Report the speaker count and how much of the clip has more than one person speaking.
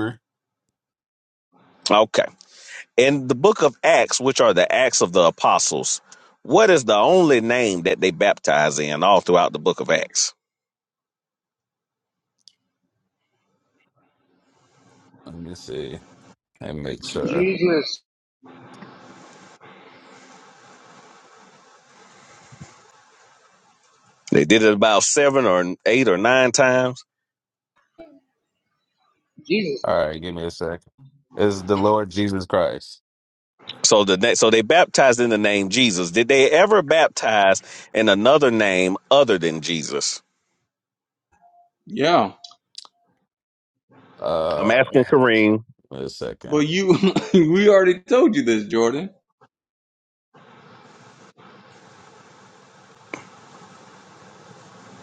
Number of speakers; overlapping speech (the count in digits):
4, about 1%